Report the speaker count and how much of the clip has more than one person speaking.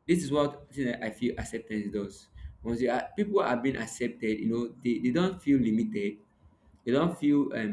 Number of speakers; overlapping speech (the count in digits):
1, no overlap